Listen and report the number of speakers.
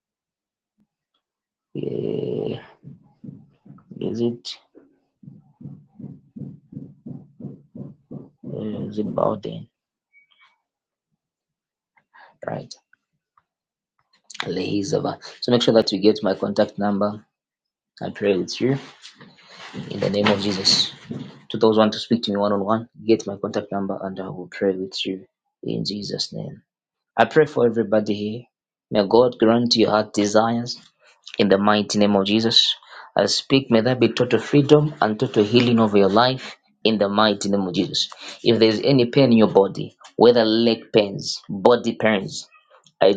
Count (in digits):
1